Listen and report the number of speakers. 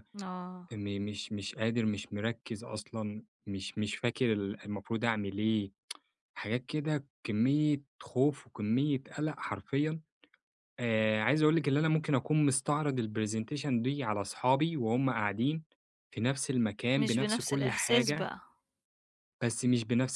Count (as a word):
two